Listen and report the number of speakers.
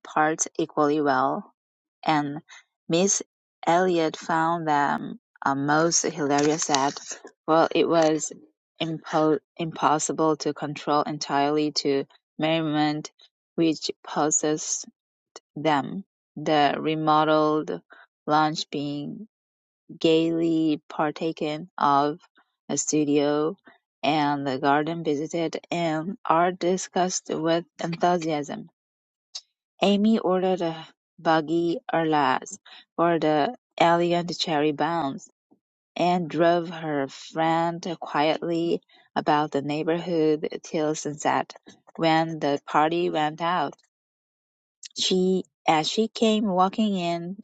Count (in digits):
1